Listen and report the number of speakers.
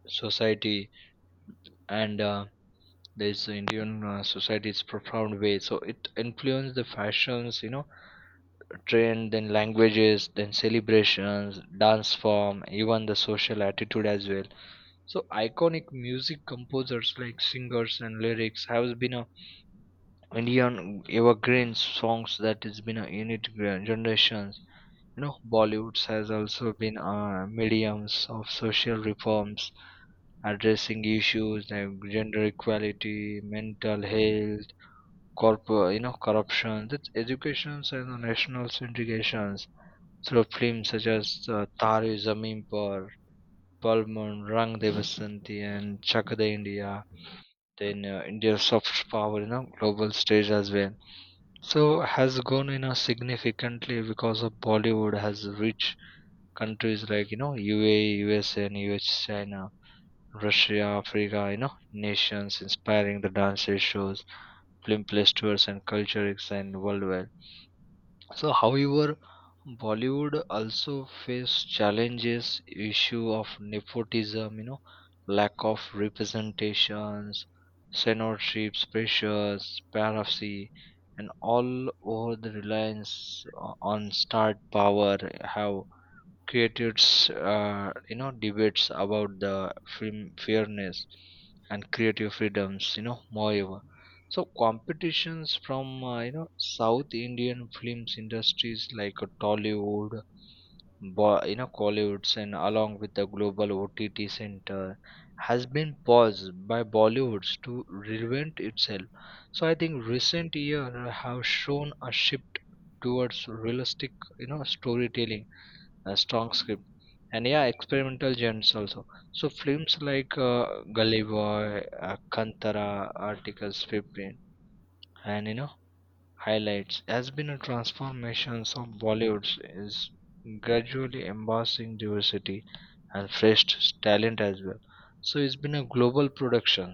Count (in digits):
1